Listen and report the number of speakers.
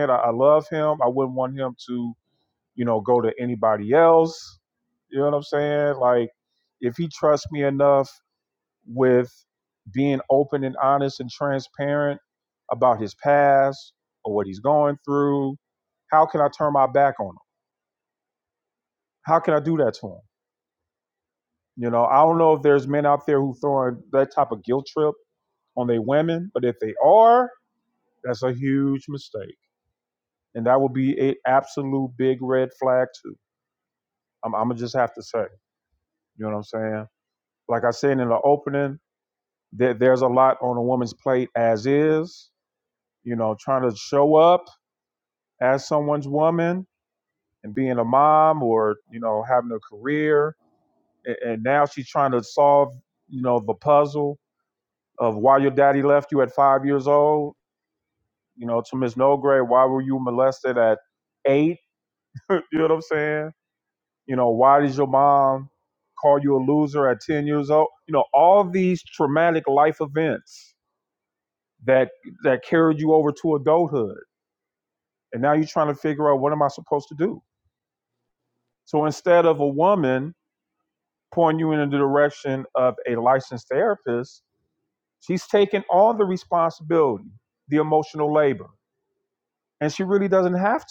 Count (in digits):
1